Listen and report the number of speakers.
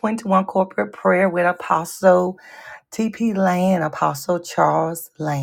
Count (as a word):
one